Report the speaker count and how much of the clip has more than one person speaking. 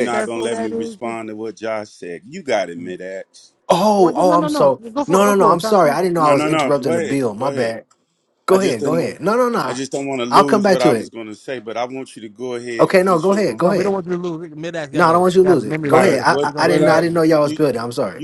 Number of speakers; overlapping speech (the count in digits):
3, about 53%